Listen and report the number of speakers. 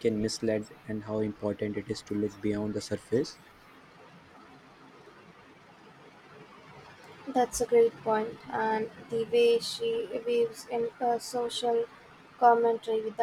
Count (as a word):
two